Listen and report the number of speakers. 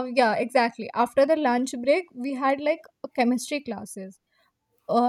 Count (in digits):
1